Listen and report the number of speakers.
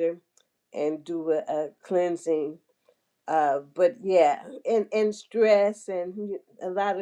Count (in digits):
1